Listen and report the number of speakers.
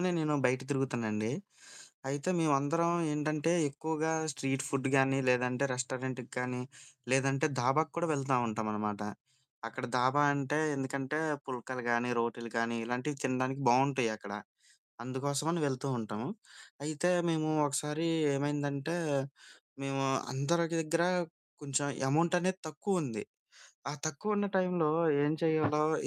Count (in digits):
1